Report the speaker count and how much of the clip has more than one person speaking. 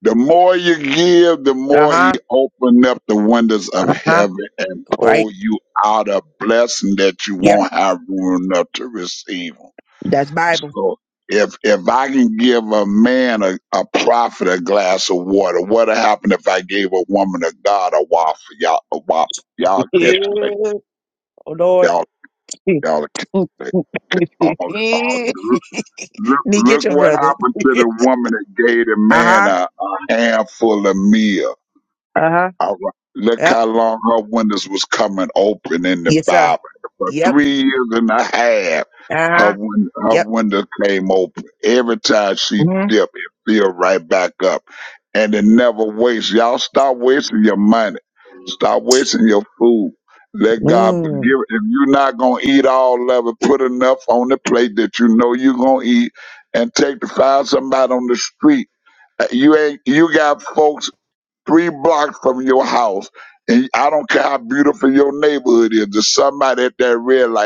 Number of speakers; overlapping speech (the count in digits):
2, about 8%